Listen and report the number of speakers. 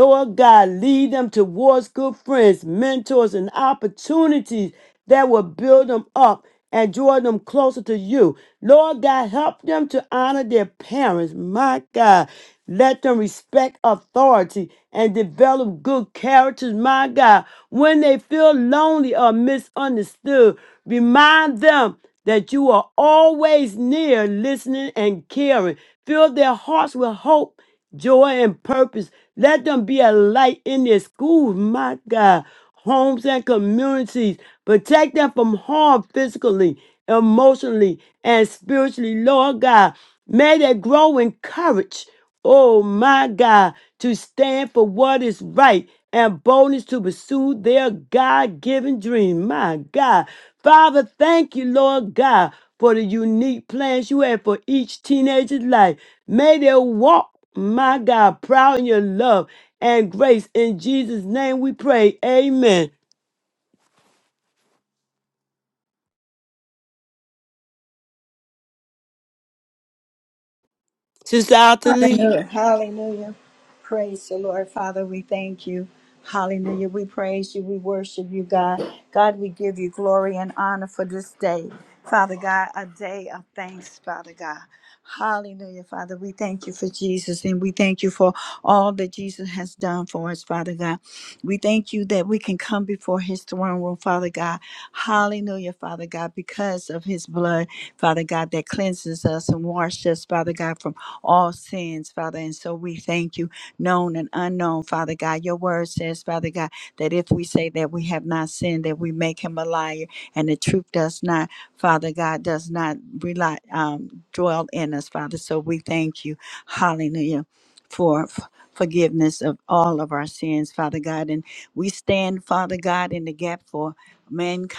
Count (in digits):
2